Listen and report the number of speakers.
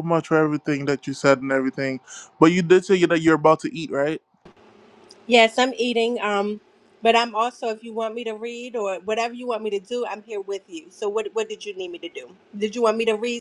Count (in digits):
2